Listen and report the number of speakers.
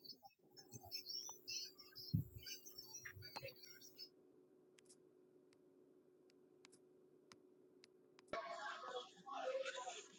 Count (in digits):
0